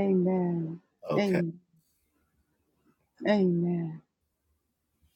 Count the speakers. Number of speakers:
one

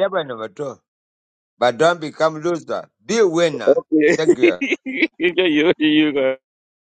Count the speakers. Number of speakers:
two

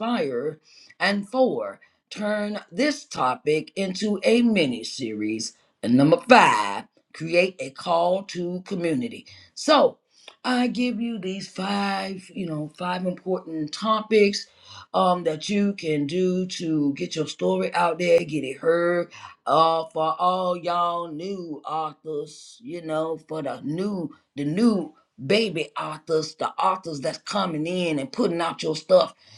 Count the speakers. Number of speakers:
one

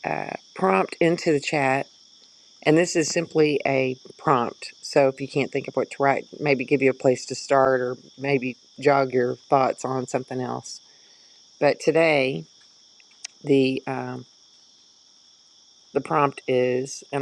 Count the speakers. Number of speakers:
one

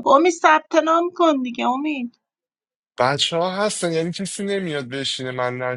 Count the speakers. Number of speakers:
two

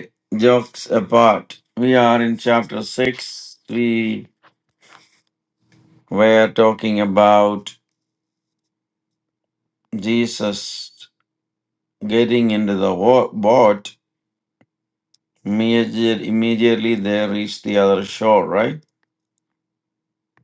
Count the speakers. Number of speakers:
one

